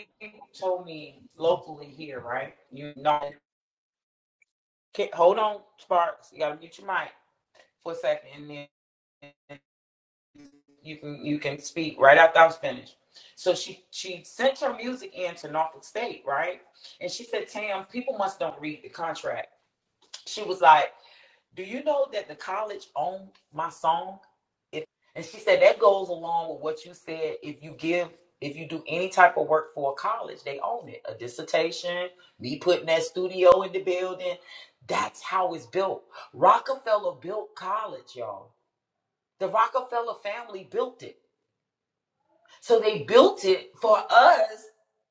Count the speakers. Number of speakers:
1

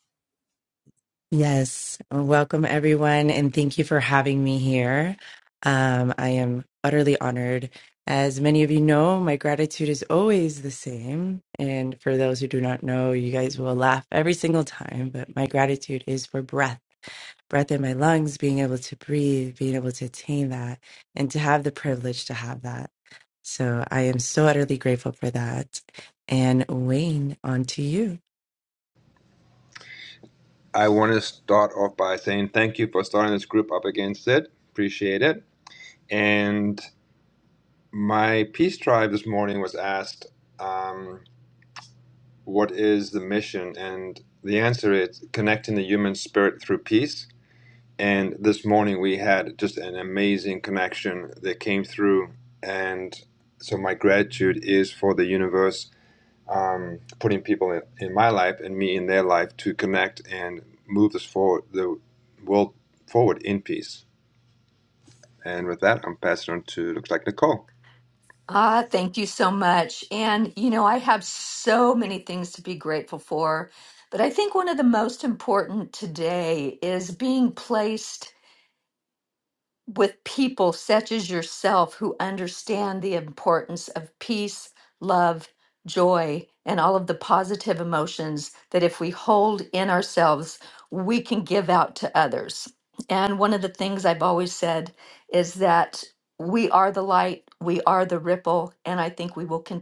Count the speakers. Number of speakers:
3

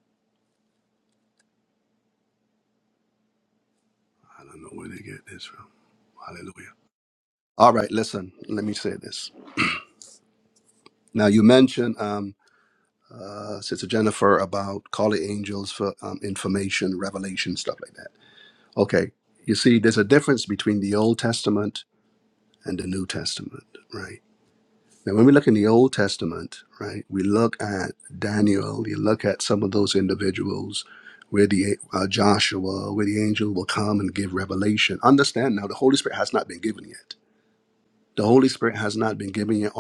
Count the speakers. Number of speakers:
1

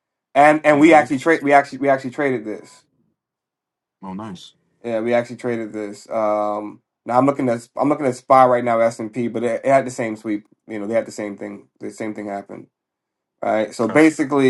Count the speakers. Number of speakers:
2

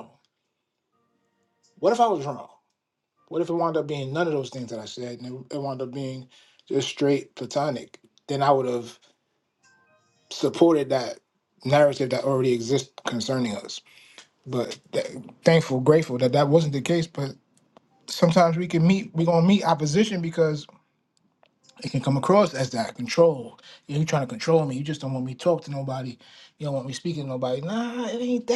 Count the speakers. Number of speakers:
1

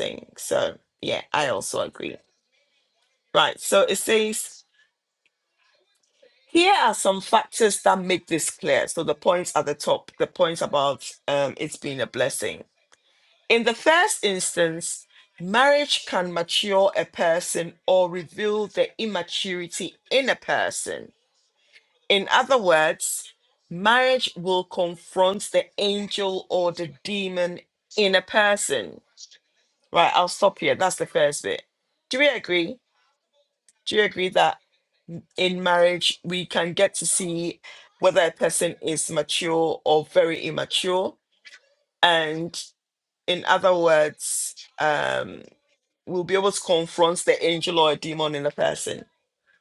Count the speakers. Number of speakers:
1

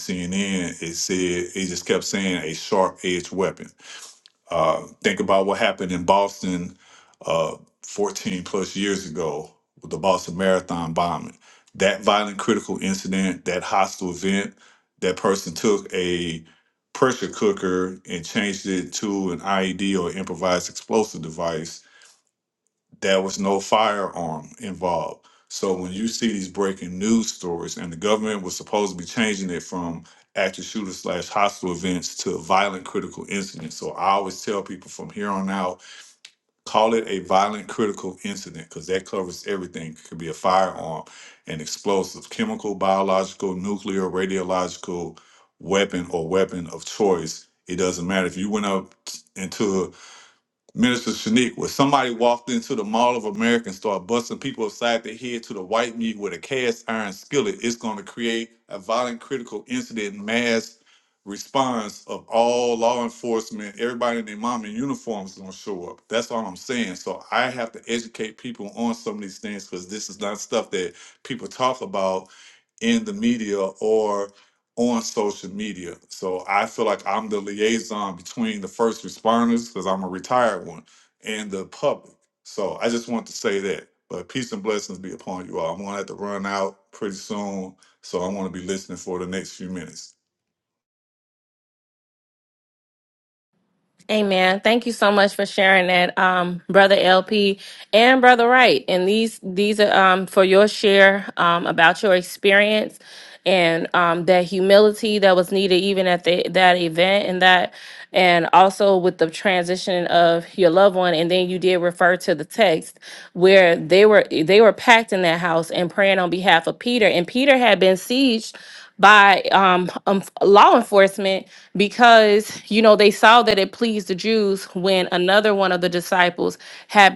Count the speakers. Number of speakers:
2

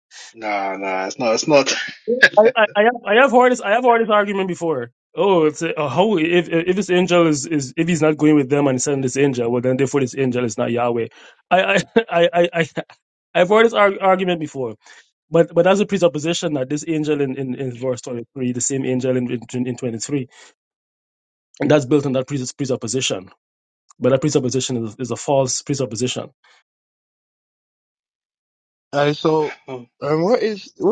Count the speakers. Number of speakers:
3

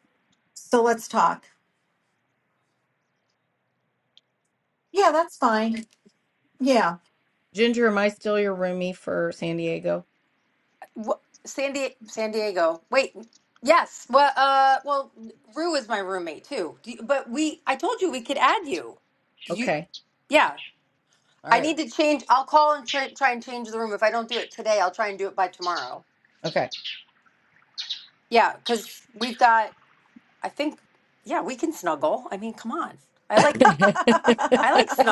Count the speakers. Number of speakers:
3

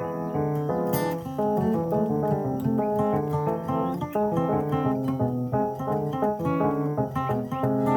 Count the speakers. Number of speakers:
0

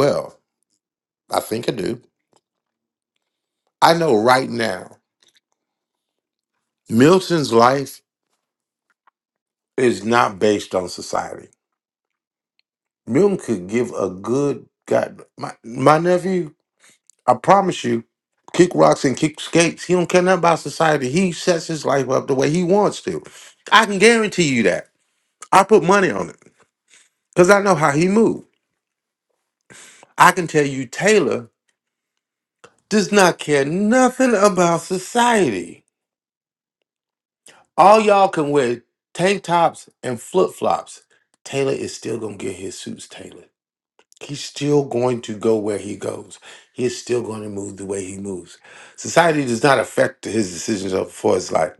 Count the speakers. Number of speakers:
1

